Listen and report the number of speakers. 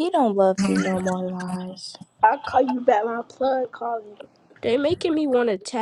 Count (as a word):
three